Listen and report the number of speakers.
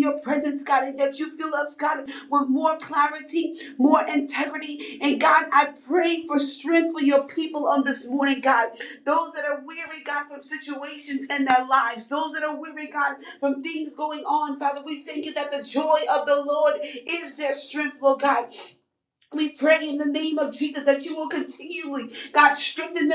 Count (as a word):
one